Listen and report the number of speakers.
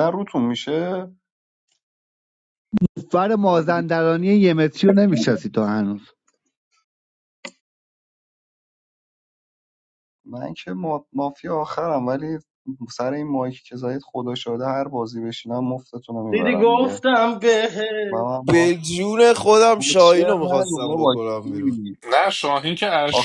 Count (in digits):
5